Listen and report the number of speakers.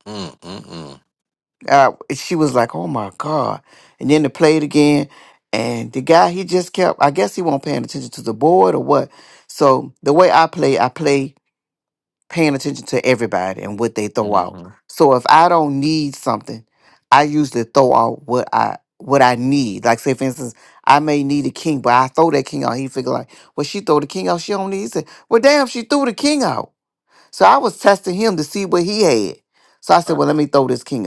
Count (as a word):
two